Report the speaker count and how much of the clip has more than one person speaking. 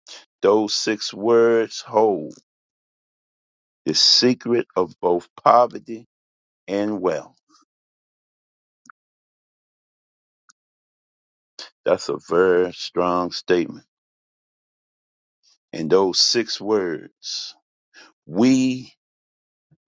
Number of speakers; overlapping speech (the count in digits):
1, no overlap